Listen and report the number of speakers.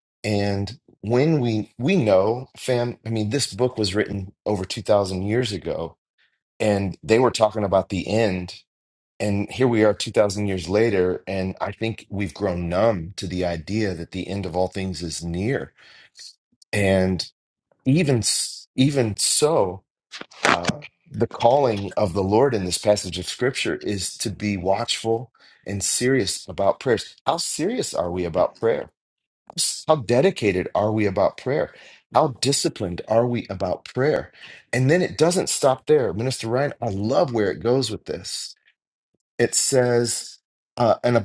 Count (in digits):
1